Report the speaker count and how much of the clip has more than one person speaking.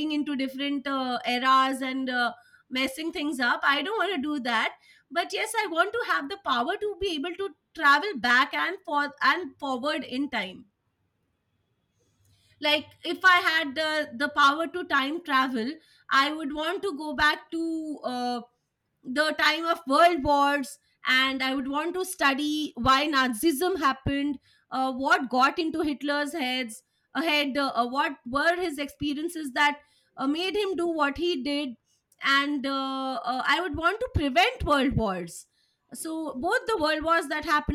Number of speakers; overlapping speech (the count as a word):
one, no overlap